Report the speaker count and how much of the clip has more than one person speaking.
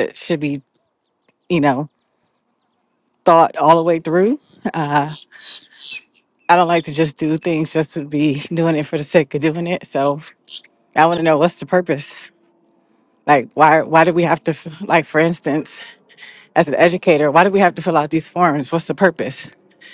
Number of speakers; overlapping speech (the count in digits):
1, no overlap